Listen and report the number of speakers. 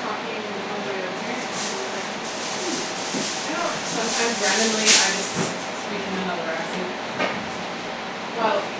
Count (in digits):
1